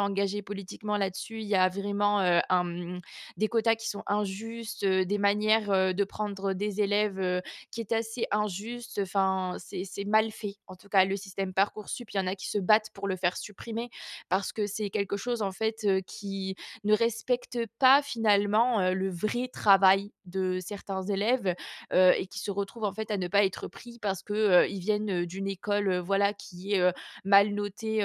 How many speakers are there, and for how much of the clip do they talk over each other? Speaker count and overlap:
1, no overlap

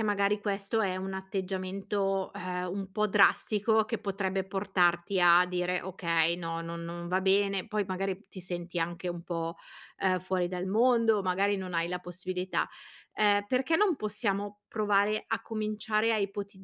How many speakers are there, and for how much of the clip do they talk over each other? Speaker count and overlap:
1, no overlap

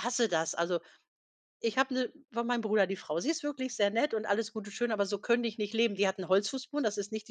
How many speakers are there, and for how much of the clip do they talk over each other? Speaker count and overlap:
1, no overlap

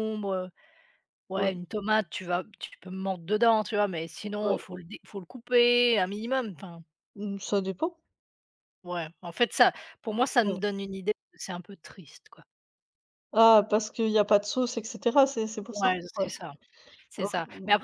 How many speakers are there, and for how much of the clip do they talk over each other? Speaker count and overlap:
2, about 10%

